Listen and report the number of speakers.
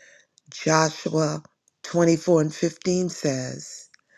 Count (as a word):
one